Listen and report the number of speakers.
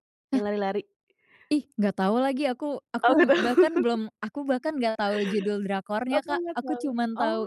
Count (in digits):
2